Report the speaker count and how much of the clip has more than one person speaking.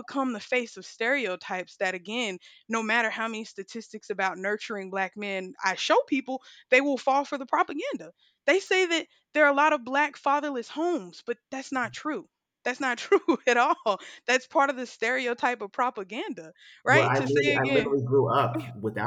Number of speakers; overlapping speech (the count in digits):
2, about 5%